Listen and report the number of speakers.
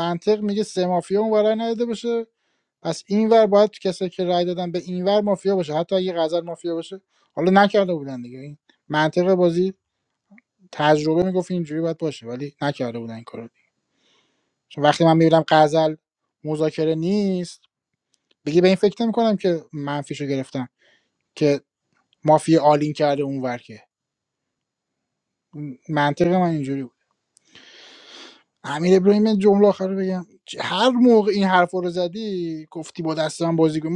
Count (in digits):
1